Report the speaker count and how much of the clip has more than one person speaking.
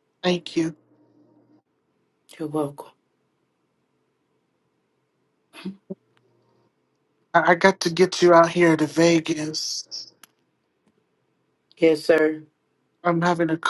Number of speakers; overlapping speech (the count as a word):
two, no overlap